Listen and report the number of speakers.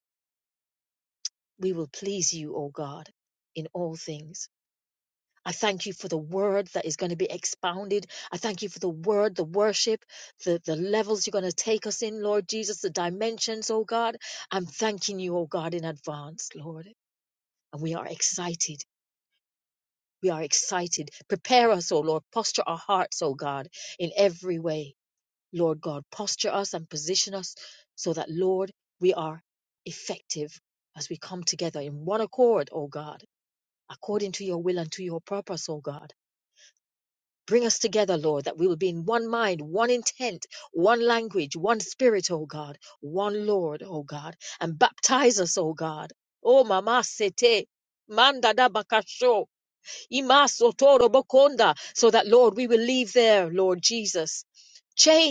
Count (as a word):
one